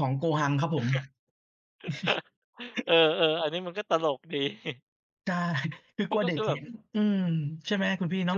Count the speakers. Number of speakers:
two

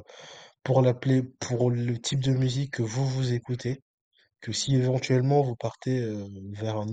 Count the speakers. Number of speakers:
one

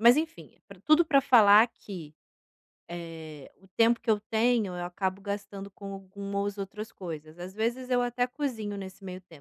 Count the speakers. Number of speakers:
one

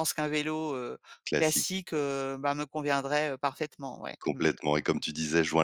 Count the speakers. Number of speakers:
two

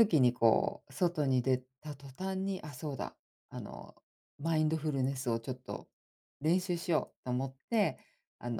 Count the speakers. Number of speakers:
one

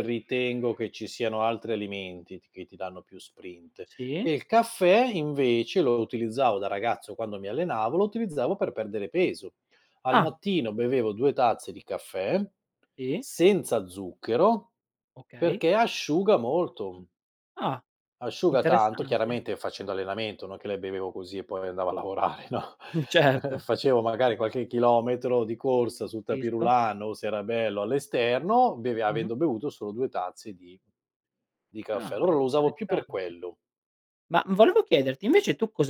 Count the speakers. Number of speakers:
two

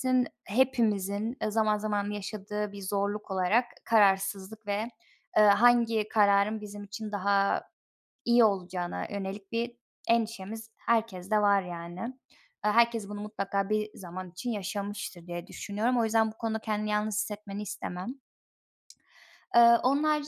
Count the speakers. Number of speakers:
one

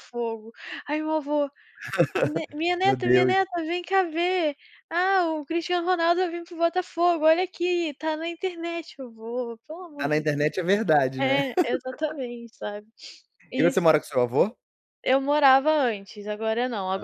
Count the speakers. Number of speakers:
two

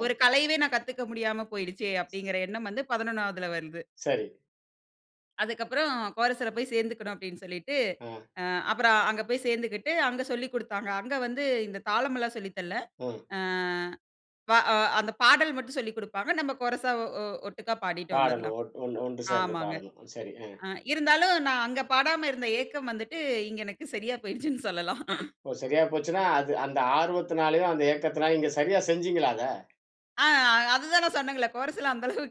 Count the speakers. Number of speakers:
two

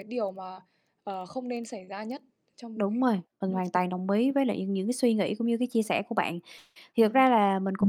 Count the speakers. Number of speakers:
two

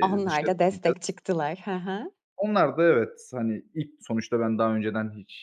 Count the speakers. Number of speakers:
two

